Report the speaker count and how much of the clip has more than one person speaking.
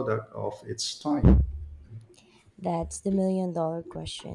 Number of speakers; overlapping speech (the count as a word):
two, no overlap